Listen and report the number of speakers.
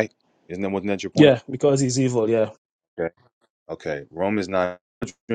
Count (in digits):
2